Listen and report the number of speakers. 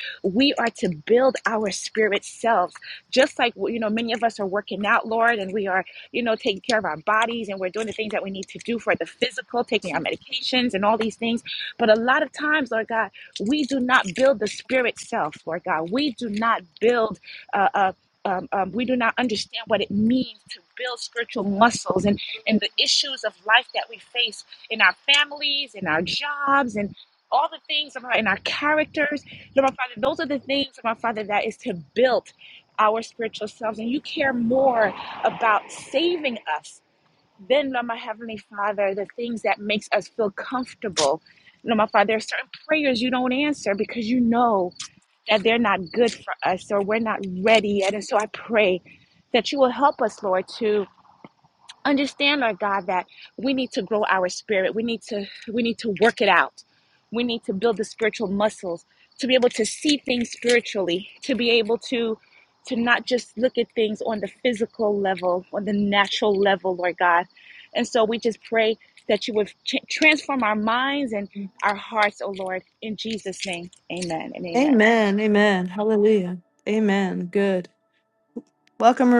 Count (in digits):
2